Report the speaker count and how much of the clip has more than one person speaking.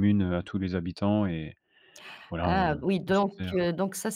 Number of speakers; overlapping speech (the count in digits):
2, about 29%